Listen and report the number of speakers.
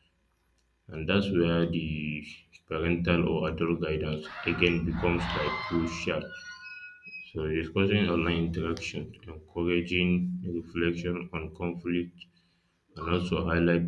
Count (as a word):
one